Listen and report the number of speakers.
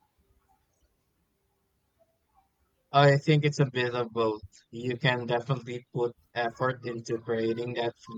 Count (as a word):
one